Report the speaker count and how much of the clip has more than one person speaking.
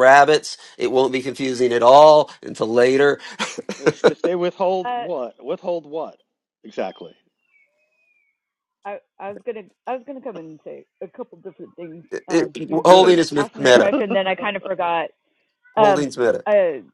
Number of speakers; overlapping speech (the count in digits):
3, about 11%